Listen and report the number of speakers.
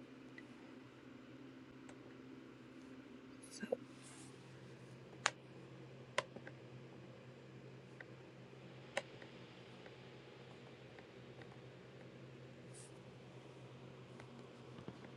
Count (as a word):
zero